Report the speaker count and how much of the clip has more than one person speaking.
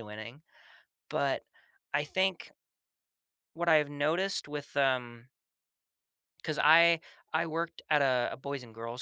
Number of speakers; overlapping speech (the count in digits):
1, no overlap